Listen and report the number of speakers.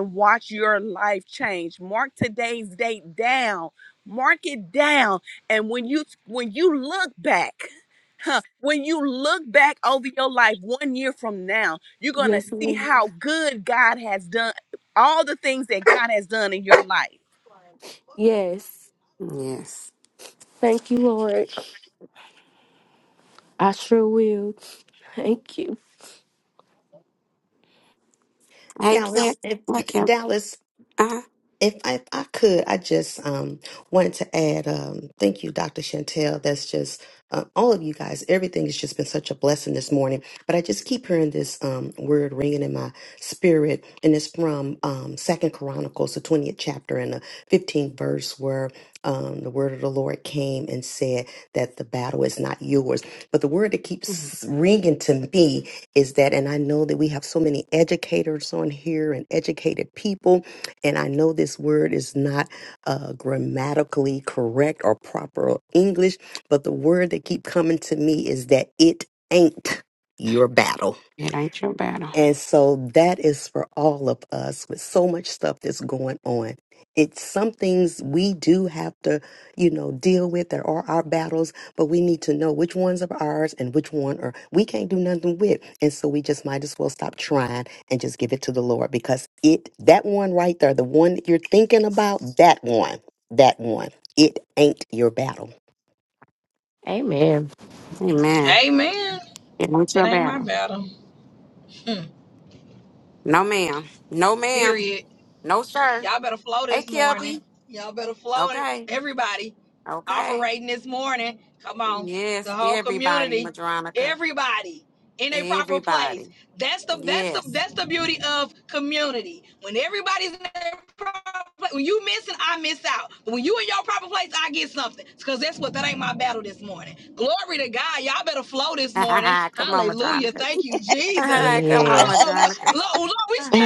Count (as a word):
six